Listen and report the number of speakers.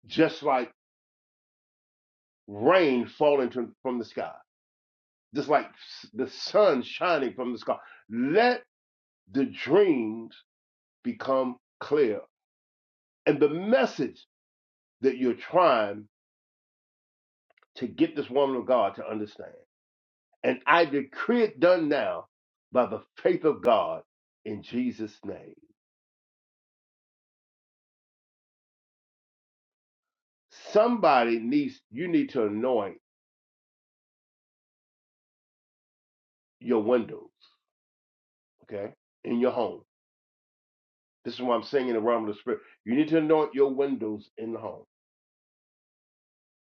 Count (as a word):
one